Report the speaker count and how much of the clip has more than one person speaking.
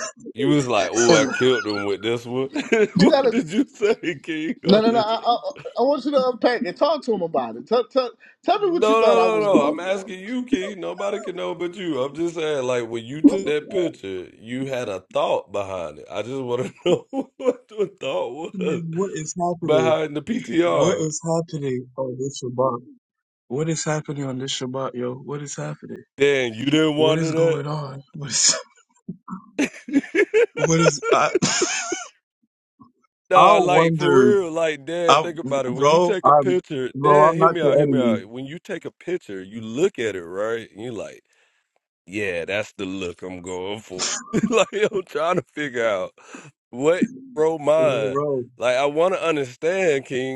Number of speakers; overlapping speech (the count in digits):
3, about 15%